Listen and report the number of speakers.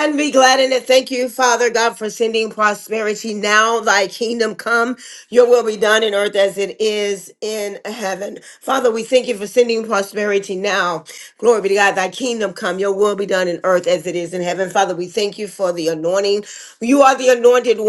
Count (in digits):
1